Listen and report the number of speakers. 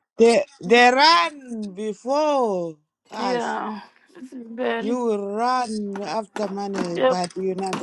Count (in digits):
2